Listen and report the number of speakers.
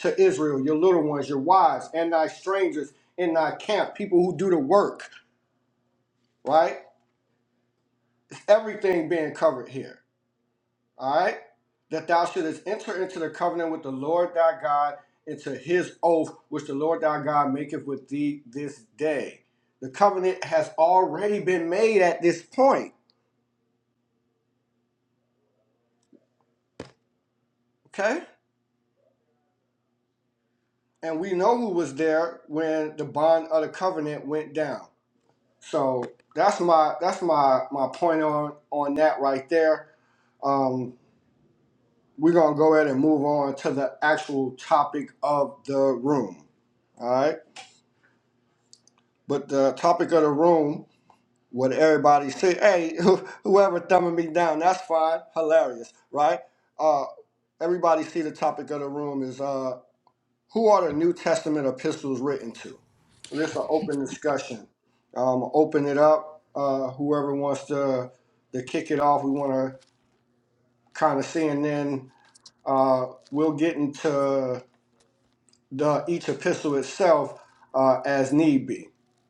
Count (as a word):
one